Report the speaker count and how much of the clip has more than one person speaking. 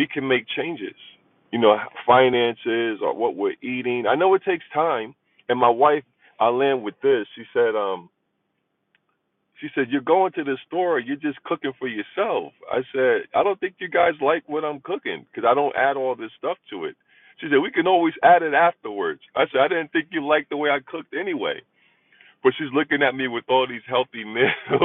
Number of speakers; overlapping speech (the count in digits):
1, no overlap